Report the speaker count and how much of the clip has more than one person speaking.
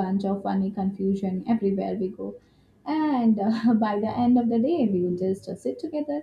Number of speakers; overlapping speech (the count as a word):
one, no overlap